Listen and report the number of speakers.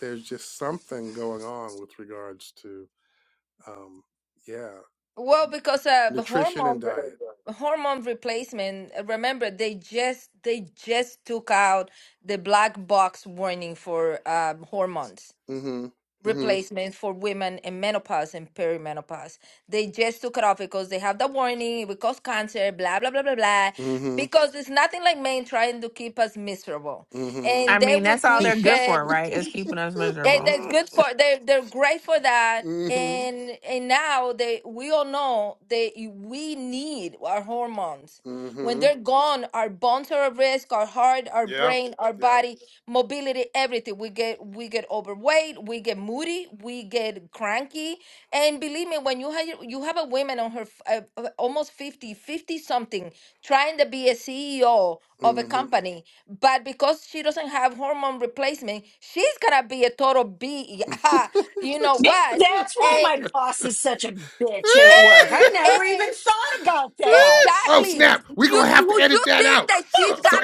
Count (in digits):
4